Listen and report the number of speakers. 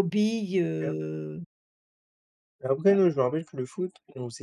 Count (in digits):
2